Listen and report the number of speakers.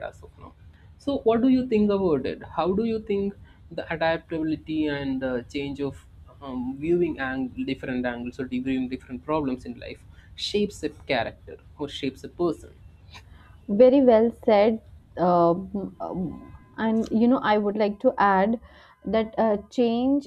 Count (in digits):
2